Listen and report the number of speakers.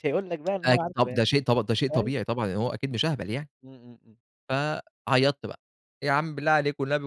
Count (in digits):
2